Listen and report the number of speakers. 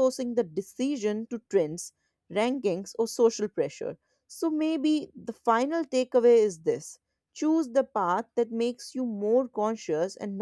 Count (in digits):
1